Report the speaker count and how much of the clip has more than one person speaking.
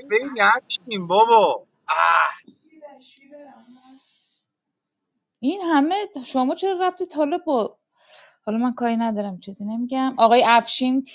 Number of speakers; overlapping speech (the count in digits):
2, no overlap